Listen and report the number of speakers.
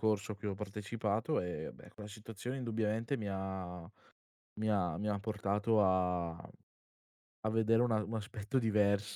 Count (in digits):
1